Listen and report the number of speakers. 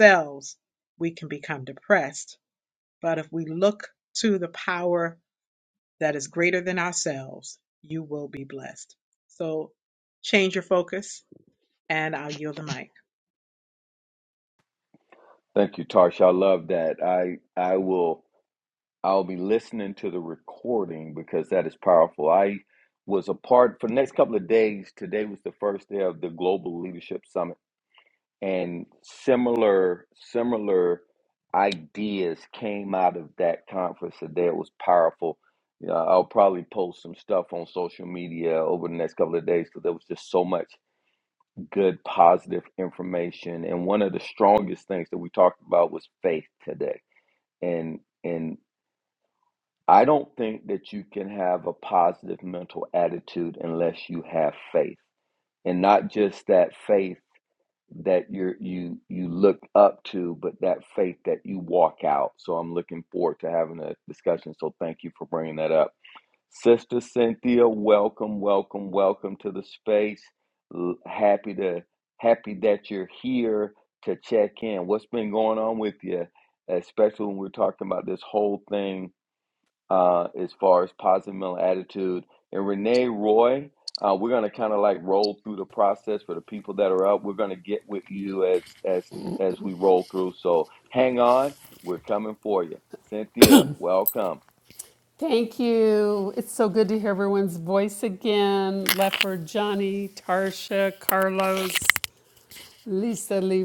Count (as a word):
three